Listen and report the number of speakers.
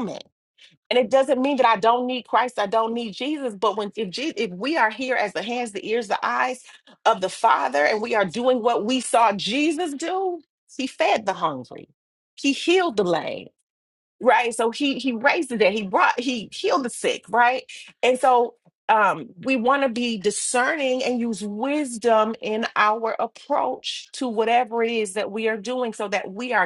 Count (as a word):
one